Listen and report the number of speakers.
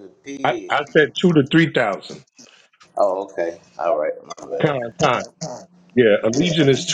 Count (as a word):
two